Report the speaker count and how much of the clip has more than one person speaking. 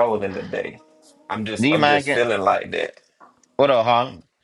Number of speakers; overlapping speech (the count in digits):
2, about 15%